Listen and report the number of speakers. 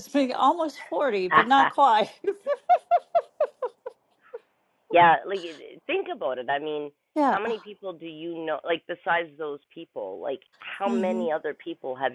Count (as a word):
two